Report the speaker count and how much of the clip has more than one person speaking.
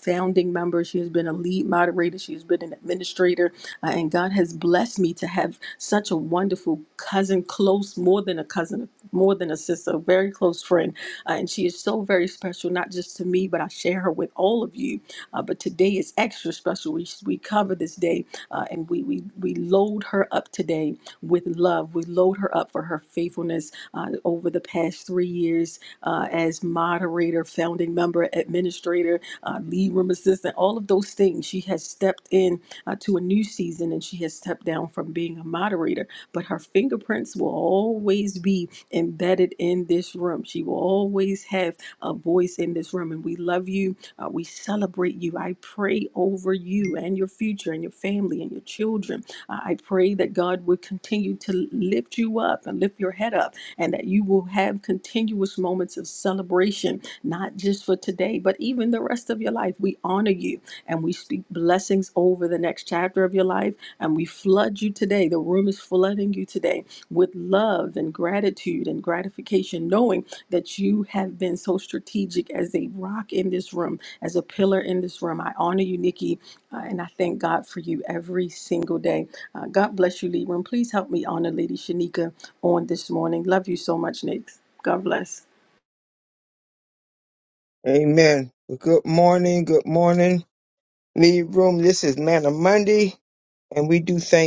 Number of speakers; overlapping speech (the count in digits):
2, no overlap